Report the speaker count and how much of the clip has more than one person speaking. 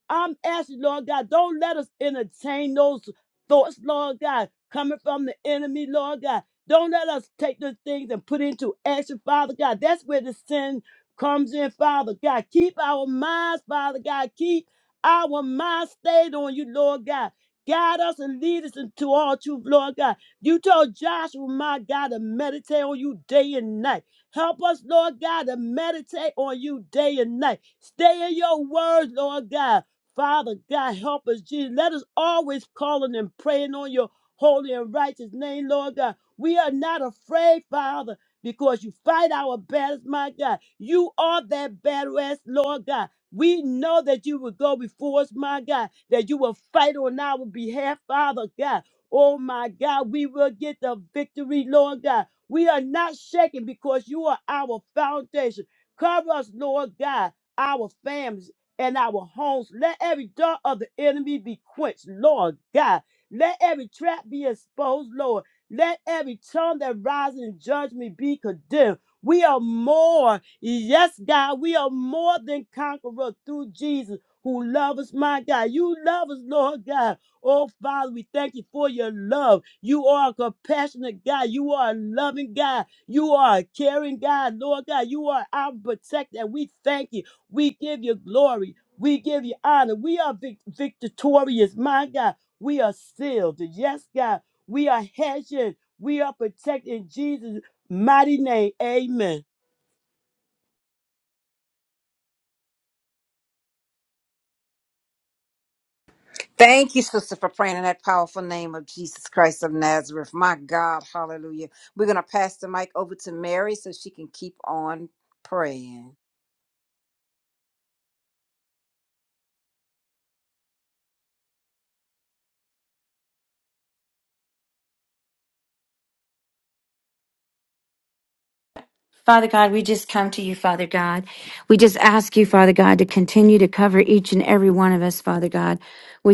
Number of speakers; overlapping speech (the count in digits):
3, no overlap